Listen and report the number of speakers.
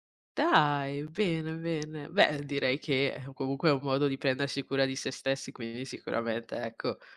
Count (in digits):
1